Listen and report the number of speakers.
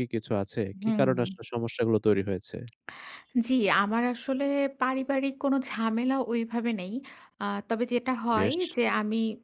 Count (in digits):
2